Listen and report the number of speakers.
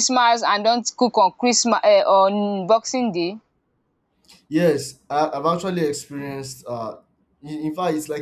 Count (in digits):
2